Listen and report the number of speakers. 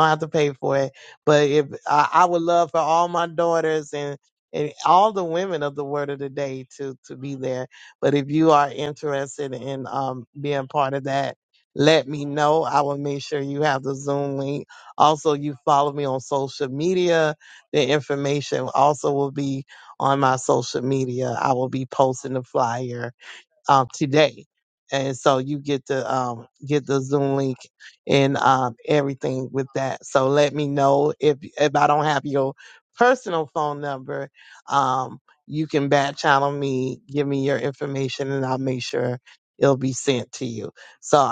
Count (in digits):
1